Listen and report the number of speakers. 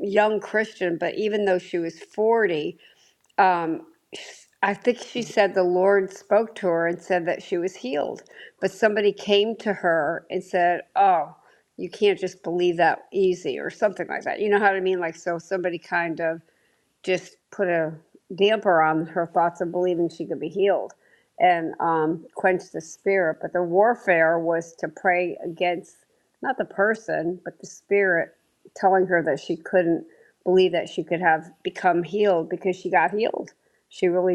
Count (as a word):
one